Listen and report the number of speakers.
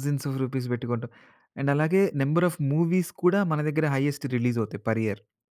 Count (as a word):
one